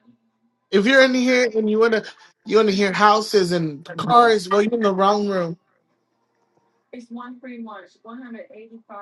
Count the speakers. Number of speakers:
2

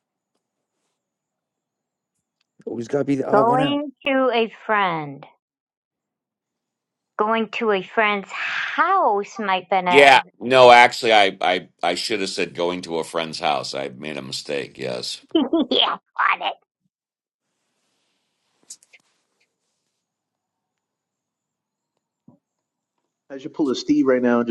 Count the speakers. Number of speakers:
4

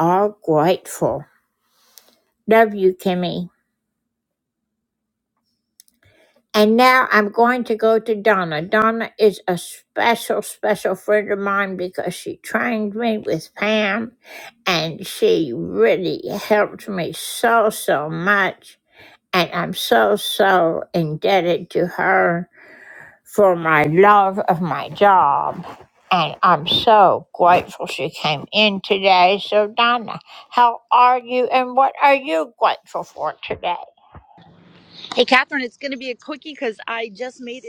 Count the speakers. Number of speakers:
2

